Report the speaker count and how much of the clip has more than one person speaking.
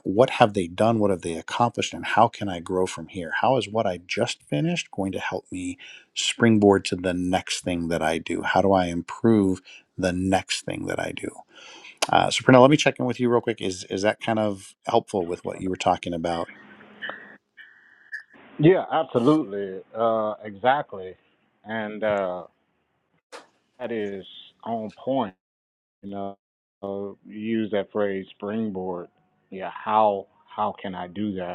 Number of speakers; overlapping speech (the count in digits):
2, no overlap